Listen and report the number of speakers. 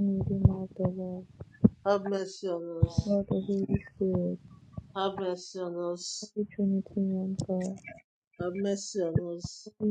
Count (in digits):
2